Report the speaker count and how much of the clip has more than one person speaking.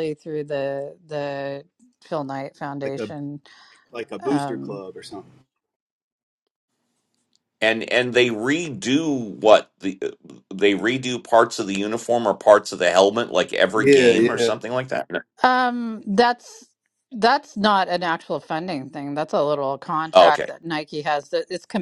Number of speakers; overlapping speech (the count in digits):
3, about 9%